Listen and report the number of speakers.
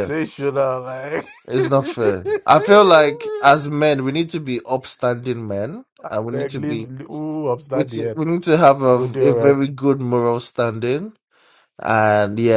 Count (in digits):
2